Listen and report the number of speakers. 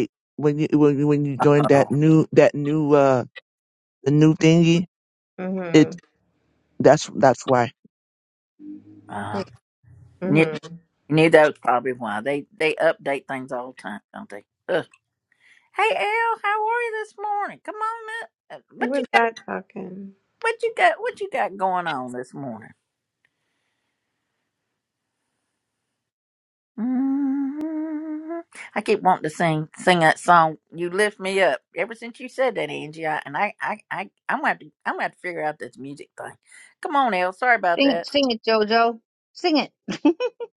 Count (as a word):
four